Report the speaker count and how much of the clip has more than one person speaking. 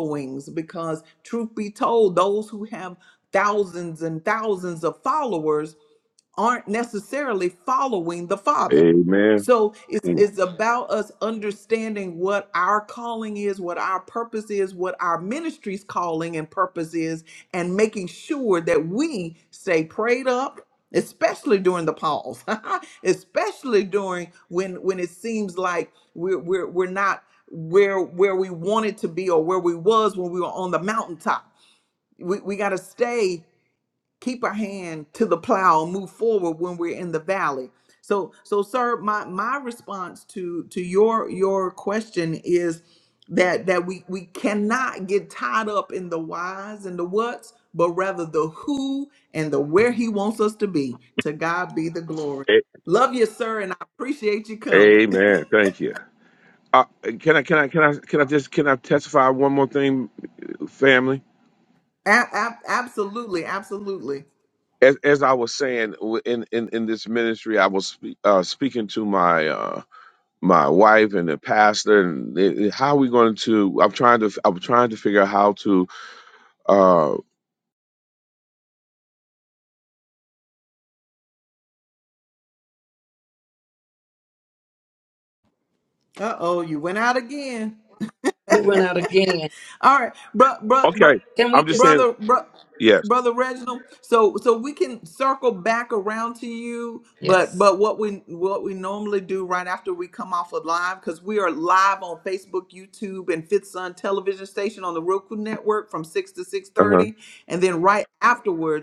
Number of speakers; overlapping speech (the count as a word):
three, about 2%